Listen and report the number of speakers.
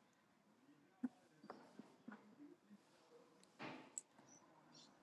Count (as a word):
zero